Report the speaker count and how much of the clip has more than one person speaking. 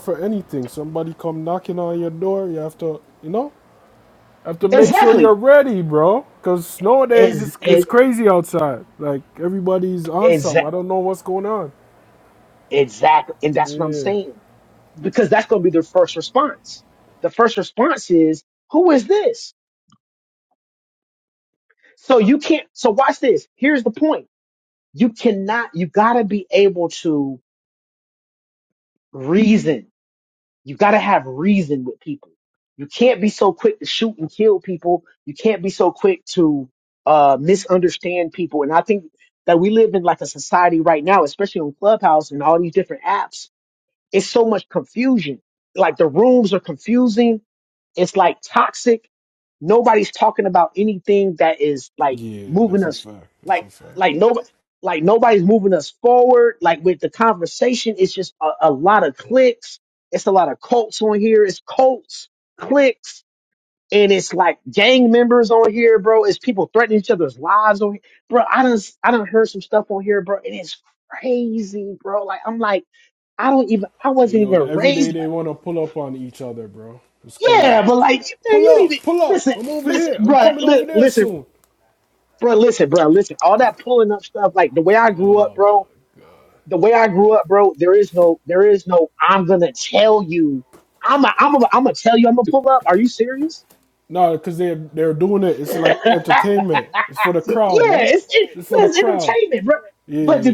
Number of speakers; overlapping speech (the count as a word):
two, about 9%